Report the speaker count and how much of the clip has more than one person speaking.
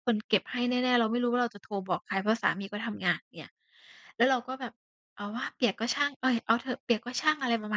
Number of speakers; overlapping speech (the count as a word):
one, no overlap